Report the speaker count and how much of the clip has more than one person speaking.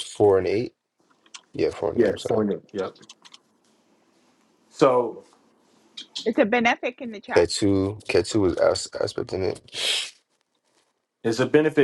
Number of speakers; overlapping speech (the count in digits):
3, about 5%